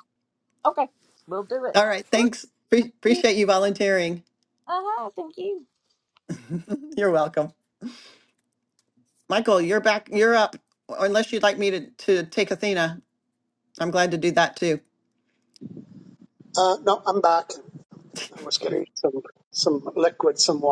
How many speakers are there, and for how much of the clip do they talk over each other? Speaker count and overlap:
3, about 1%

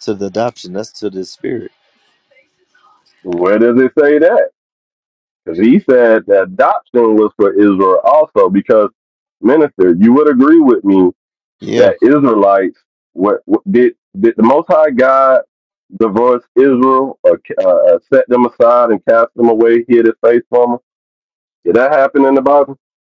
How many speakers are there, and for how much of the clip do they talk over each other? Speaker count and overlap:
2, about 1%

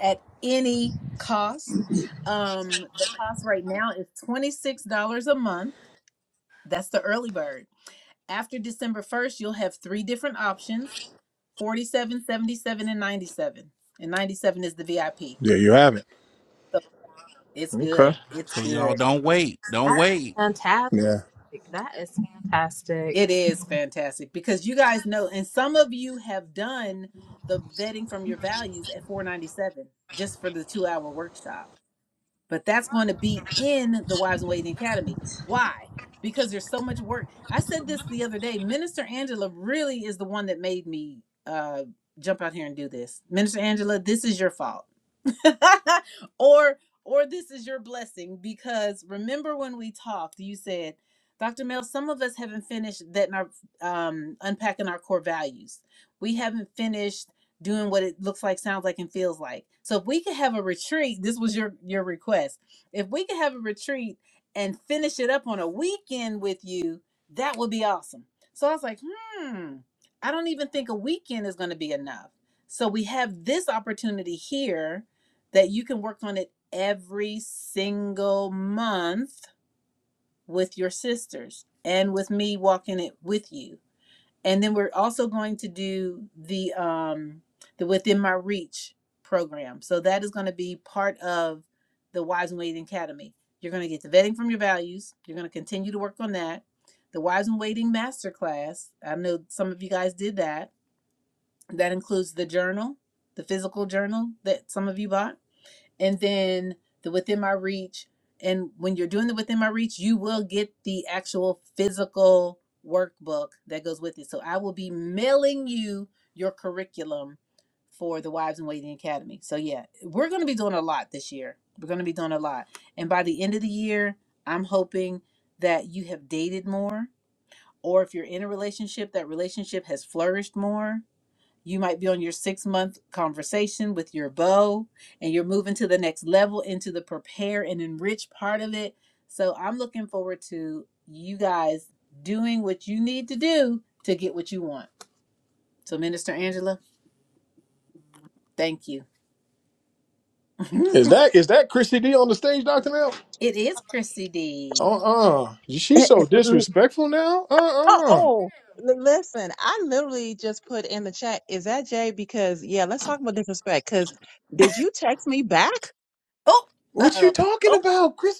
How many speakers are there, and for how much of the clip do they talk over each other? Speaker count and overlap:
5, about 1%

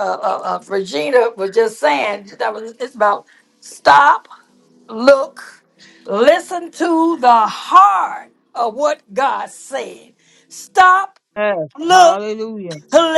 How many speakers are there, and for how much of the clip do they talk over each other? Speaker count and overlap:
2, about 3%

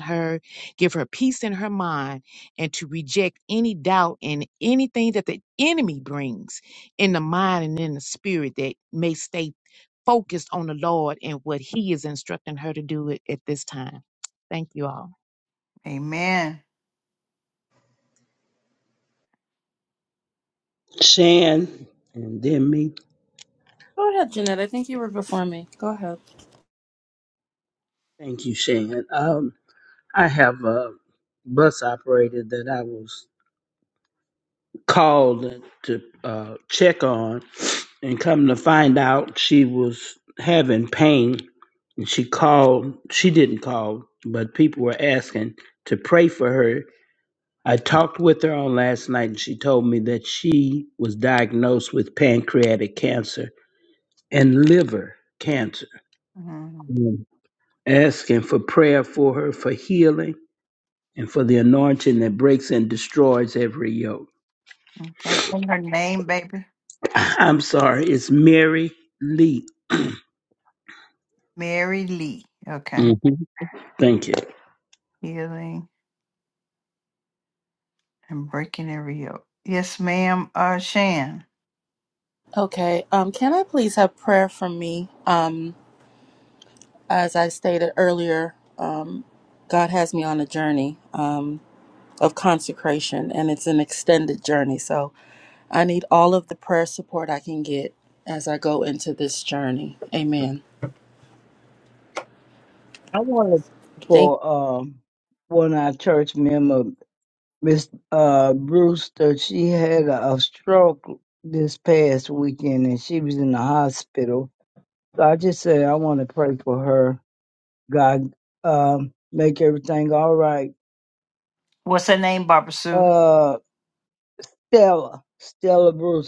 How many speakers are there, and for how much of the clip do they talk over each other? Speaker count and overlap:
5, under 1%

